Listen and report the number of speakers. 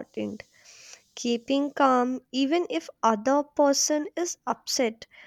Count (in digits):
1